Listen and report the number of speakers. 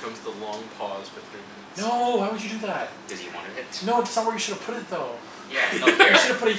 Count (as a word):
three